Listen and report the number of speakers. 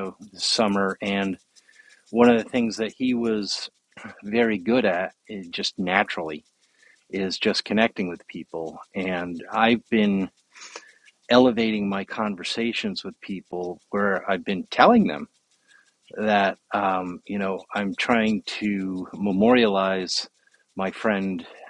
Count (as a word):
one